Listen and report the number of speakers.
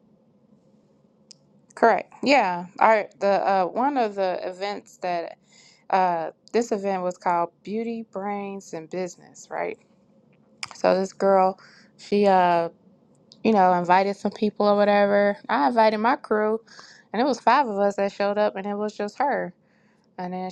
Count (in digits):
1